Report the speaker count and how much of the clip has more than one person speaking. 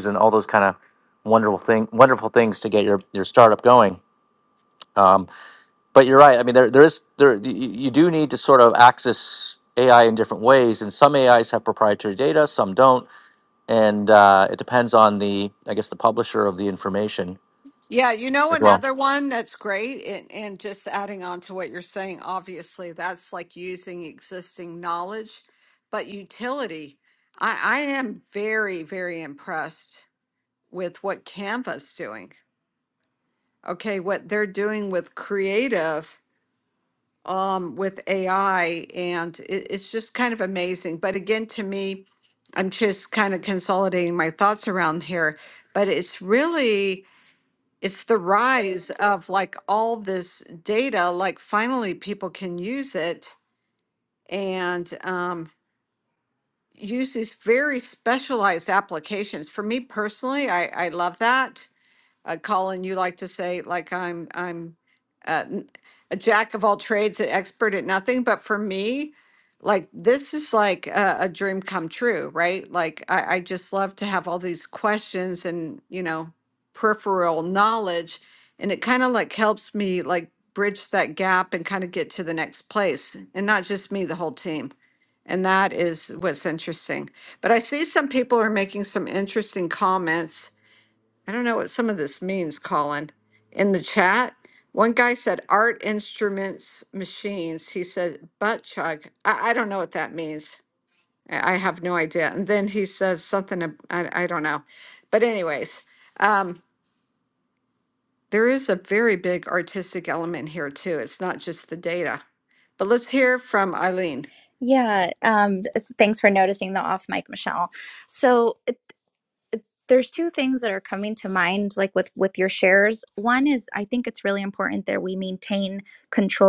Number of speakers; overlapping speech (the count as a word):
three, under 1%